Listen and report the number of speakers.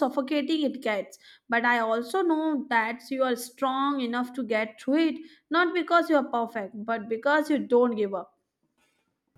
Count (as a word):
one